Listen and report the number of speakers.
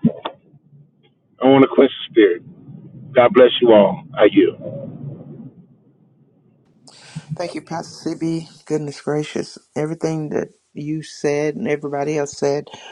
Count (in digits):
2